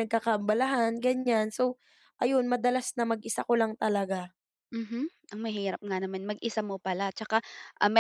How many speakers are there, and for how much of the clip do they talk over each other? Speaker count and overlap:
2, no overlap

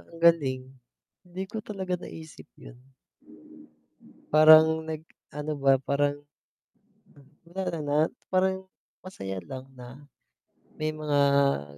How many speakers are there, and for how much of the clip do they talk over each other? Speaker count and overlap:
1, no overlap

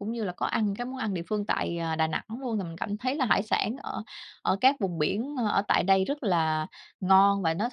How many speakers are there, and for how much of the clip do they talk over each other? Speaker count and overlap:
1, no overlap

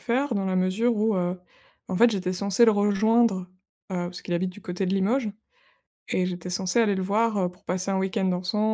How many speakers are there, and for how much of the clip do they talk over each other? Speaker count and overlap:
1, no overlap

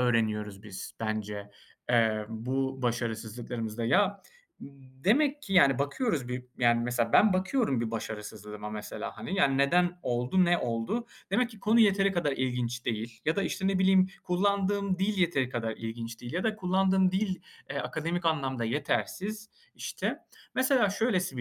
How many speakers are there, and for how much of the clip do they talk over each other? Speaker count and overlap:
1, no overlap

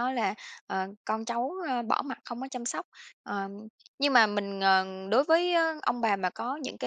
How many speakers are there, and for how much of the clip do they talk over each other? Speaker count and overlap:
1, no overlap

